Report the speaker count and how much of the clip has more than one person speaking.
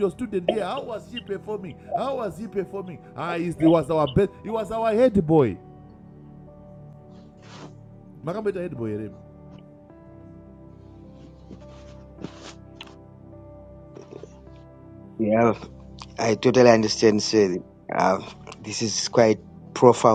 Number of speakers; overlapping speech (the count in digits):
2, no overlap